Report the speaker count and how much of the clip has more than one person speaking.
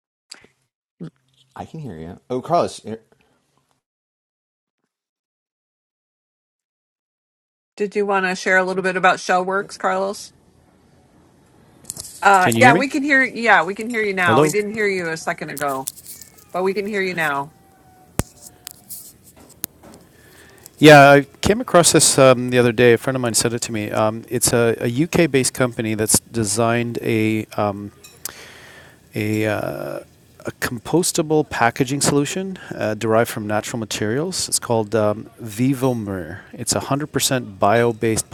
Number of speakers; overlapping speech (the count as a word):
three, about 2%